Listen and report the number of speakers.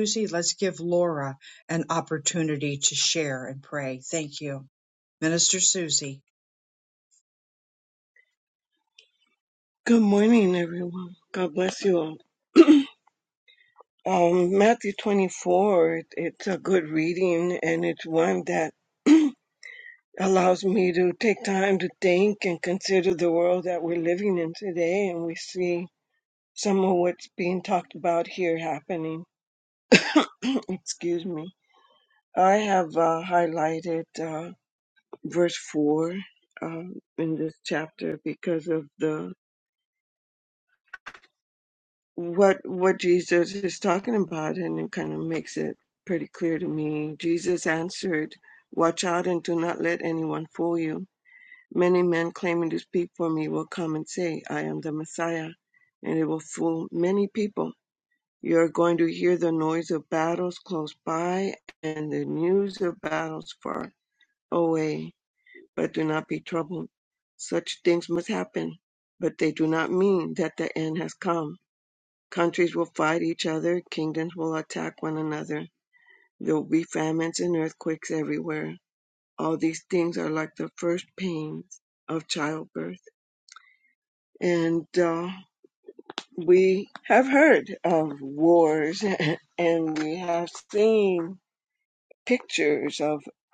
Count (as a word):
two